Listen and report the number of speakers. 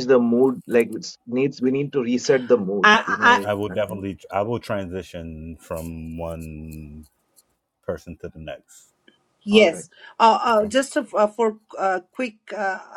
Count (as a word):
three